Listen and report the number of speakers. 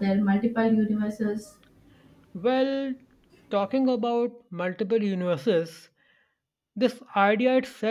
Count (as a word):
two